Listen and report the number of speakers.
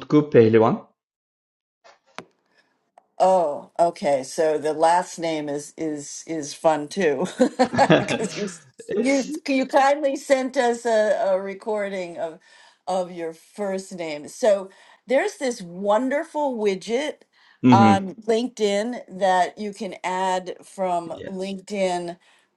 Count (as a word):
two